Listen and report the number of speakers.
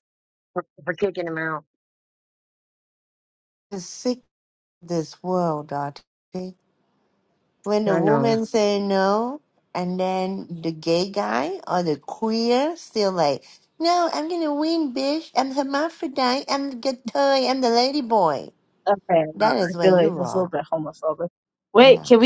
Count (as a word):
three